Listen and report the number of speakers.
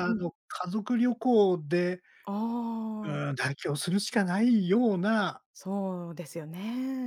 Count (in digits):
2